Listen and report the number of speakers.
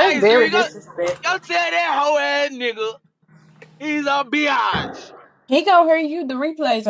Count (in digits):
3